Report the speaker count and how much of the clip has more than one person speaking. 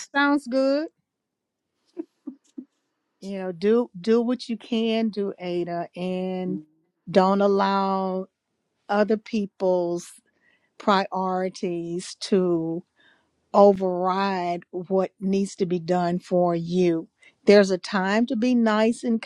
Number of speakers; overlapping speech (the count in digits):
1, no overlap